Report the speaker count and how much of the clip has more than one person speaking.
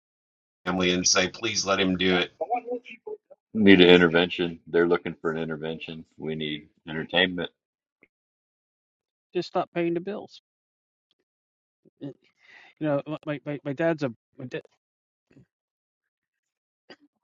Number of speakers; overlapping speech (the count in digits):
3, no overlap